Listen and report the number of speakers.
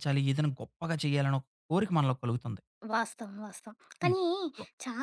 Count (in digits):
2